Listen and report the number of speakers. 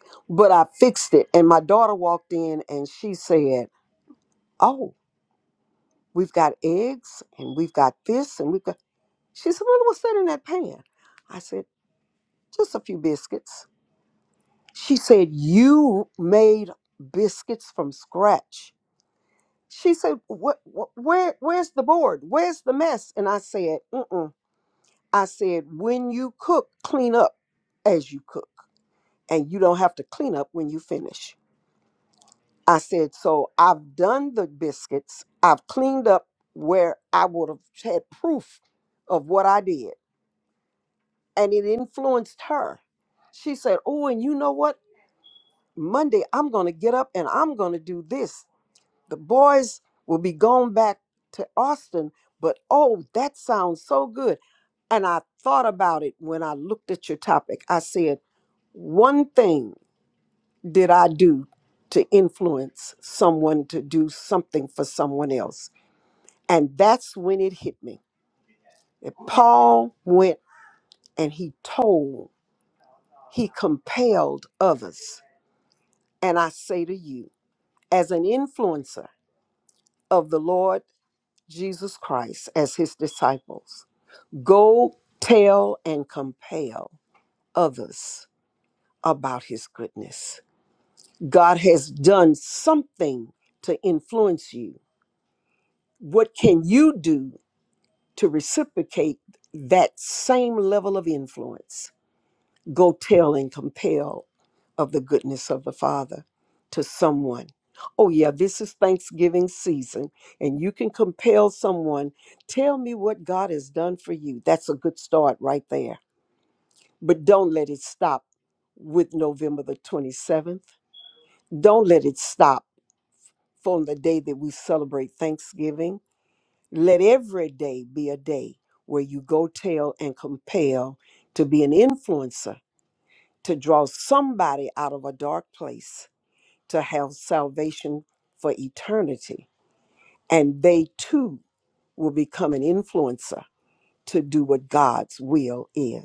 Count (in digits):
1